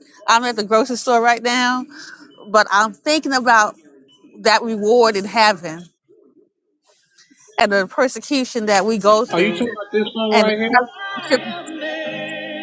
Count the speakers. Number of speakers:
two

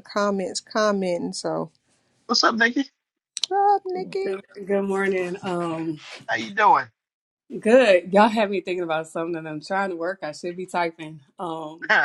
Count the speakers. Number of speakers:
three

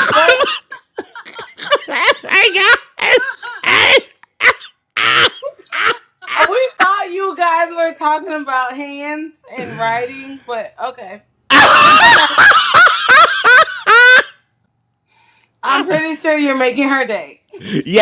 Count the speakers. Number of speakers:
two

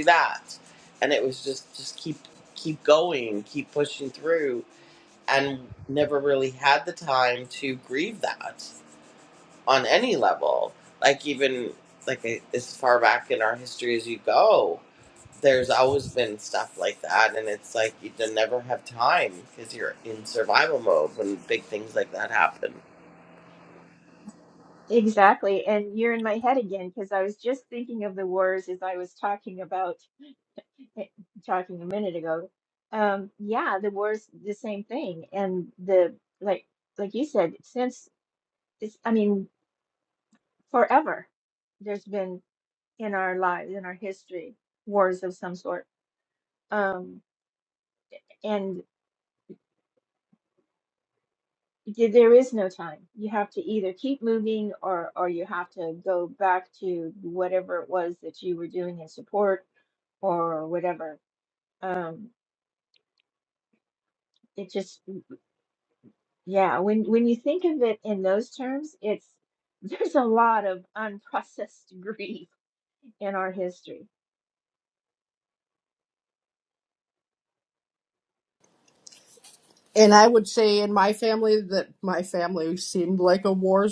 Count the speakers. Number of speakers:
three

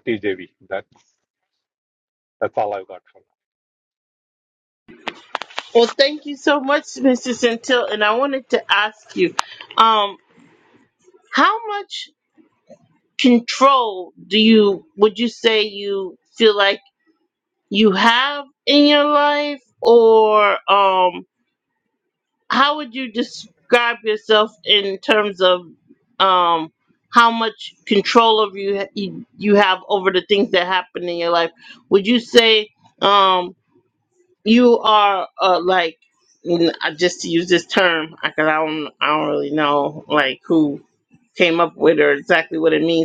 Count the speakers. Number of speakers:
two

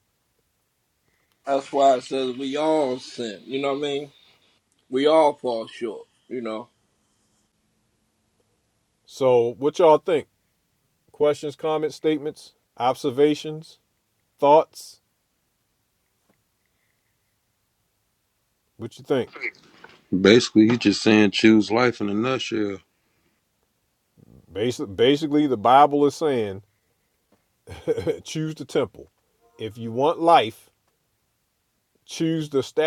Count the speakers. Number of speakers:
three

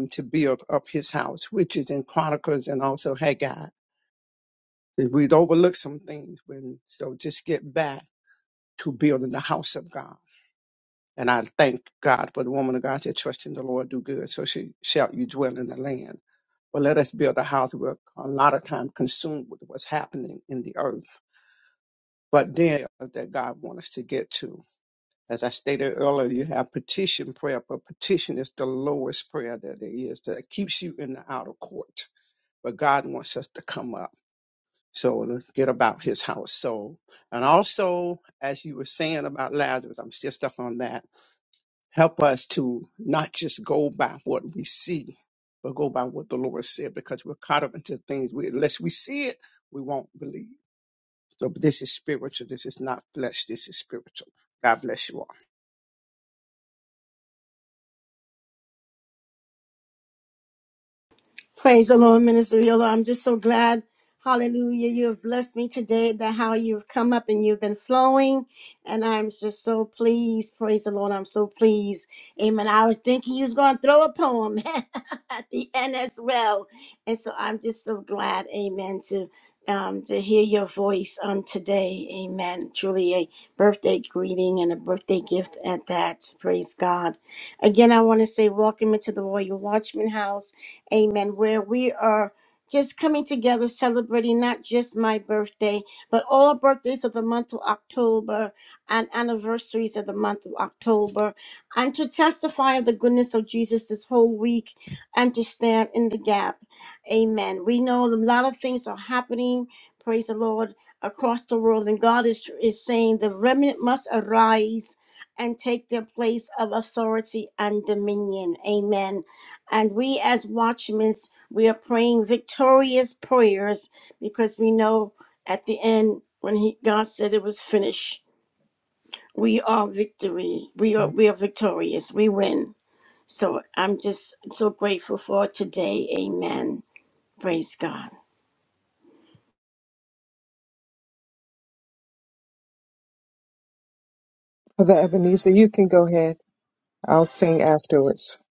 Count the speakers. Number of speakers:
three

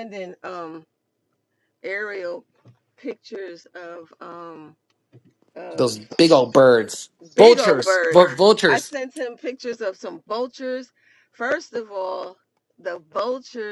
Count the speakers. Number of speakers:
two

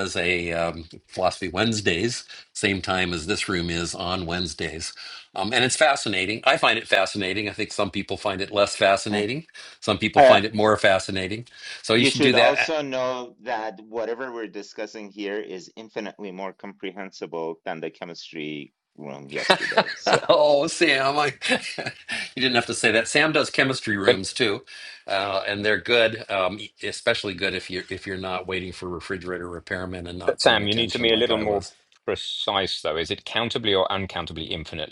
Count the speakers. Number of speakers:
three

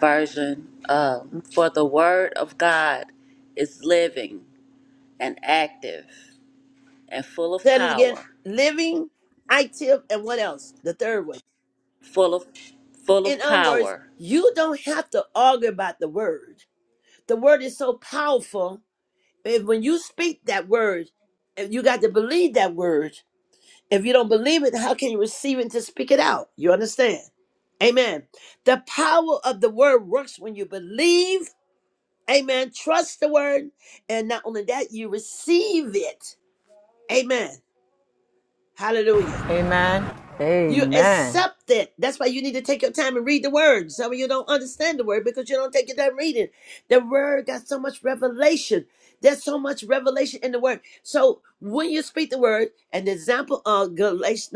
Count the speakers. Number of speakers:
three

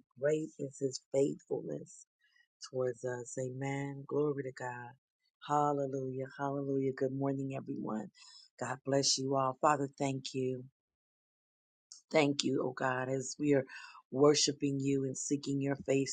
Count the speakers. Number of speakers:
one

